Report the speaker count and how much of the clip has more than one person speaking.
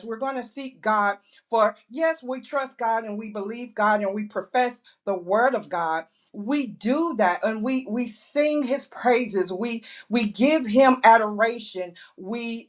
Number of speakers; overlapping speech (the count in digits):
1, no overlap